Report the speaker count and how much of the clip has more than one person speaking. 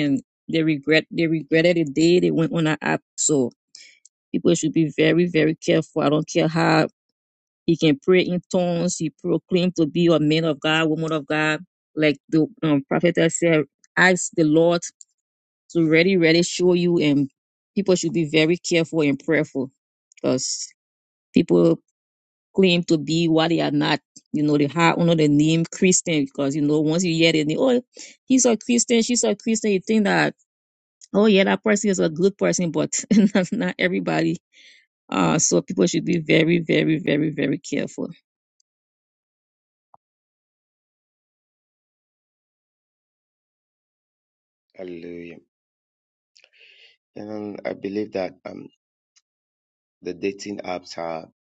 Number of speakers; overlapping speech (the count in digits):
2, no overlap